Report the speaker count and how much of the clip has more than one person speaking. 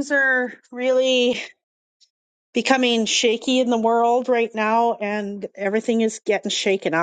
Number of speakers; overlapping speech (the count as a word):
one, no overlap